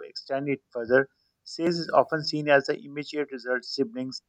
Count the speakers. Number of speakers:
1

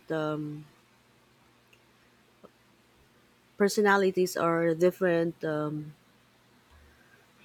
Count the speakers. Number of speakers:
1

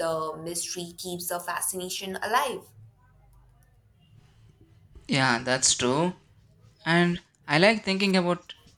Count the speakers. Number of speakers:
2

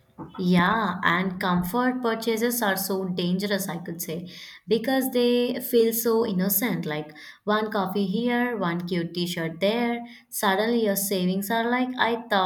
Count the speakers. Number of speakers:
1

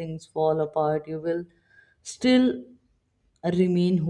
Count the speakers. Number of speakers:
1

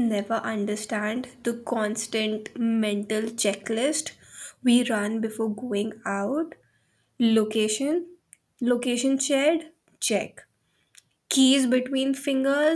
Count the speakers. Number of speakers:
1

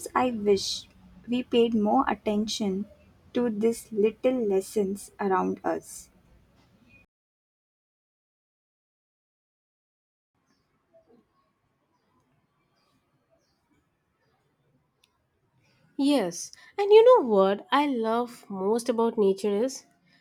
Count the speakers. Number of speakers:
2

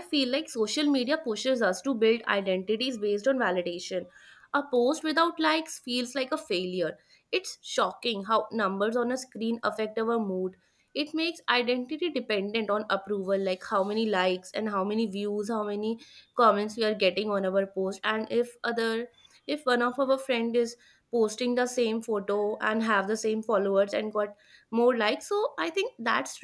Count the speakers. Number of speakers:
1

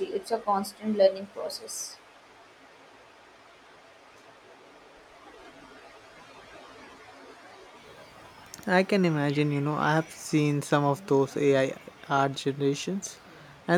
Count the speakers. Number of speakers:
2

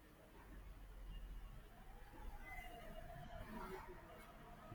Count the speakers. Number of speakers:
0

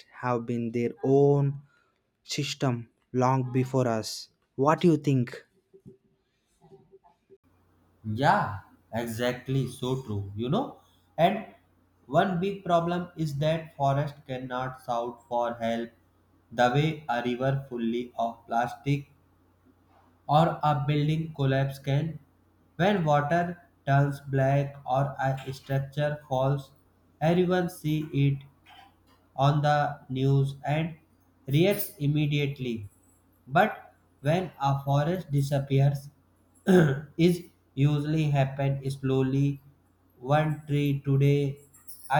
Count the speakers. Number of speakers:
2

